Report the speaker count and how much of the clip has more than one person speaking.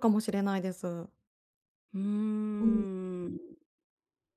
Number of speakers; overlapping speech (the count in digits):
2, about 6%